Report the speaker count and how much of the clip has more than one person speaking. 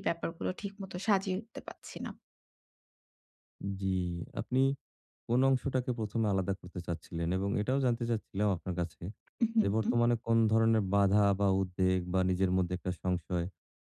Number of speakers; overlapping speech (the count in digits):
2, about 3%